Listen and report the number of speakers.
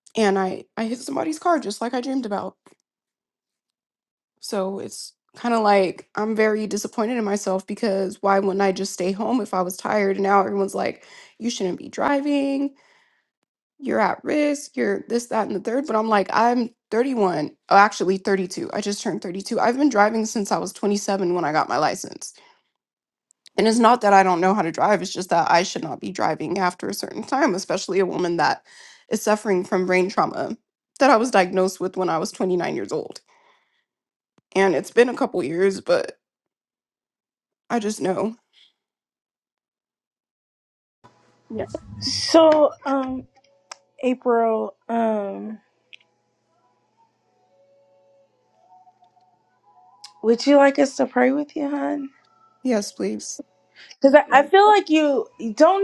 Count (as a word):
two